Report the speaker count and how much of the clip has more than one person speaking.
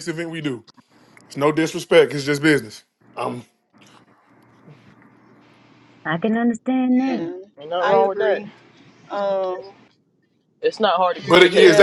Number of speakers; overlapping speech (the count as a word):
four, about 13%